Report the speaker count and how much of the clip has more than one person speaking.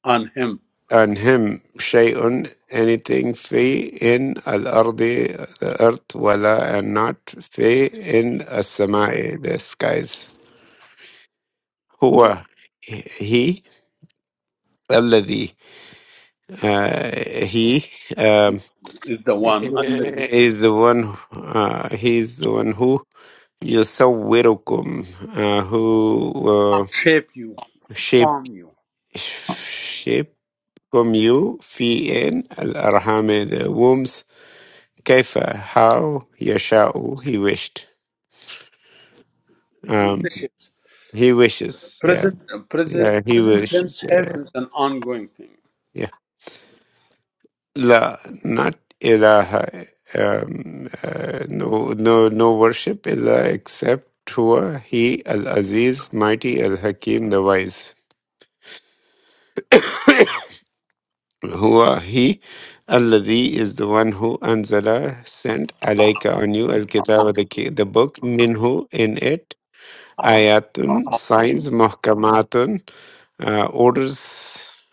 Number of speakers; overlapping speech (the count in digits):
2, about 4%